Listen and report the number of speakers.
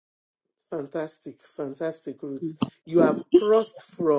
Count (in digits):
1